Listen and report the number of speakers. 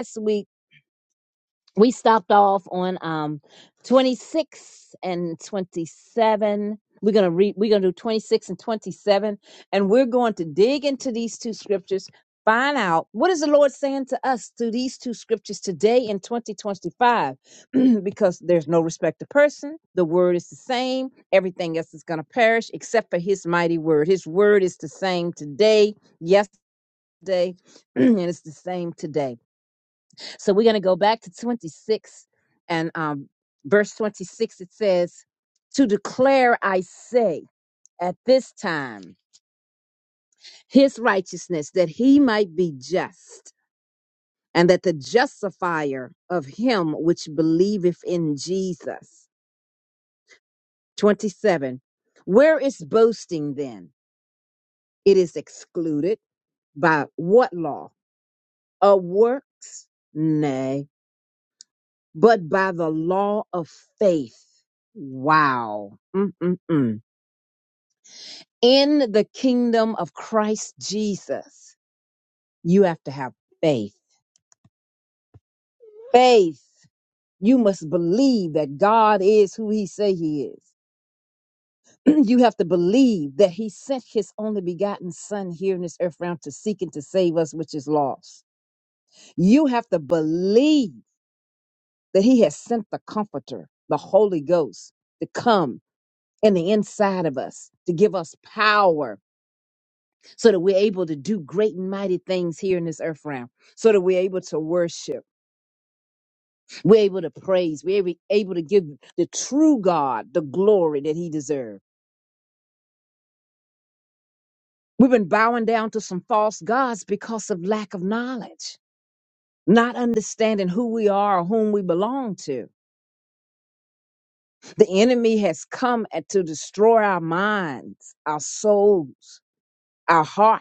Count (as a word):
one